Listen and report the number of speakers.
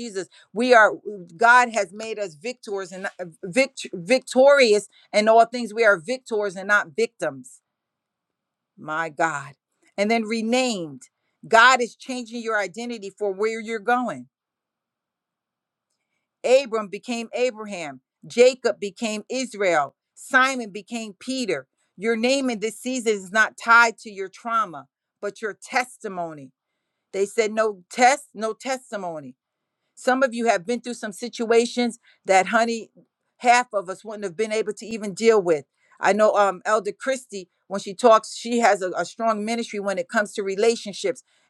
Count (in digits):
1